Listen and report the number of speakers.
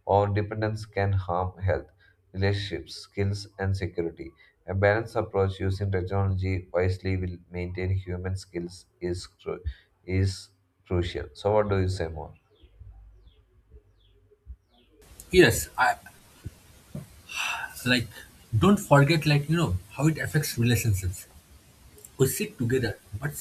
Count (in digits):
2